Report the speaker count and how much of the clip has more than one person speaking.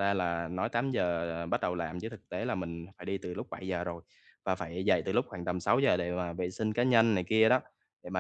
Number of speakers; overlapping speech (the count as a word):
one, no overlap